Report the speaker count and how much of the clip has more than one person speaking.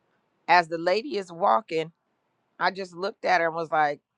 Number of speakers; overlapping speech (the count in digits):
1, no overlap